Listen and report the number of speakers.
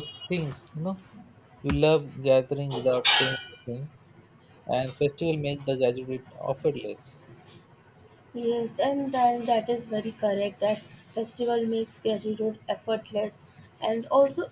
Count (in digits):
2